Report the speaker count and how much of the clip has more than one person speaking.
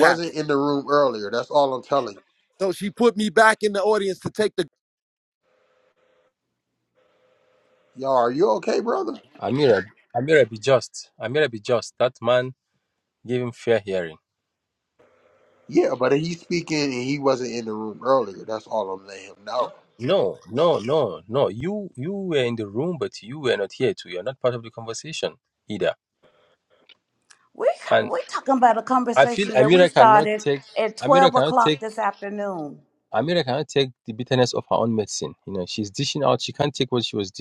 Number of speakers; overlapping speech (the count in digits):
4, about 7%